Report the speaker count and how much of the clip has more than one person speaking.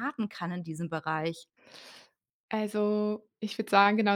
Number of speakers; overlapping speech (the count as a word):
two, no overlap